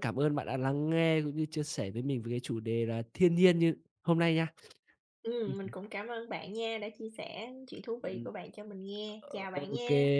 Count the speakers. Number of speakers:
2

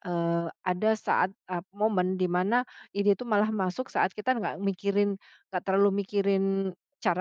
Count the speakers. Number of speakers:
1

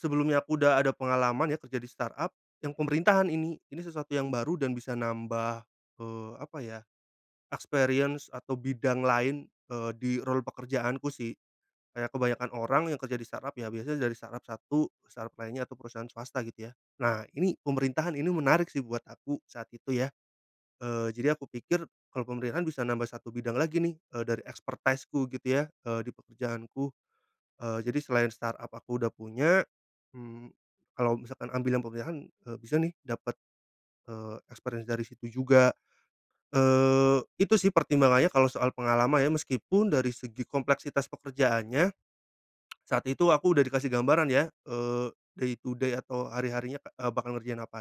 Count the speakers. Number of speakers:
1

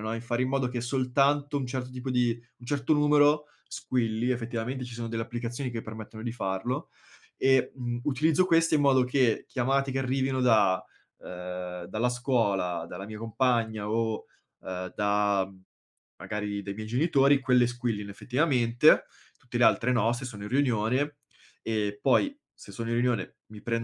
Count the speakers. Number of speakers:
1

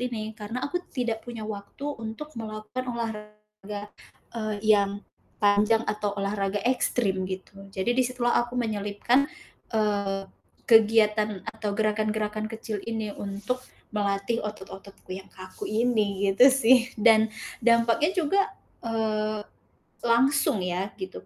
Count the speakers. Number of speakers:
1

